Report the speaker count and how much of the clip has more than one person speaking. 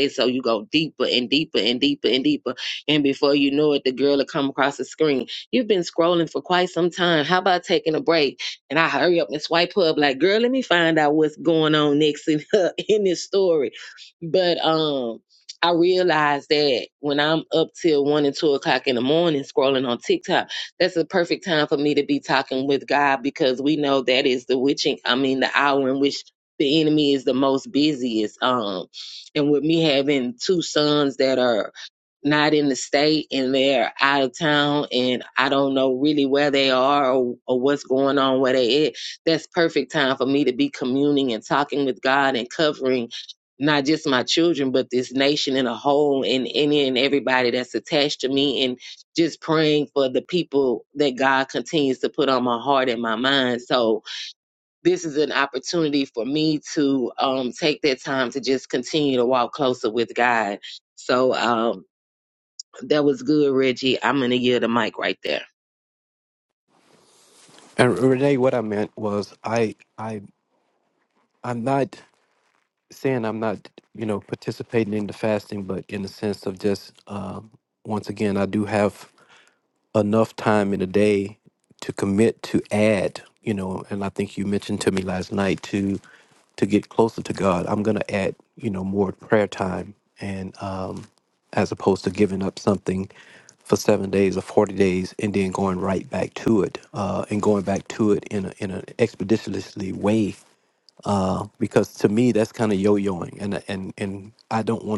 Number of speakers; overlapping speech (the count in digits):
2, no overlap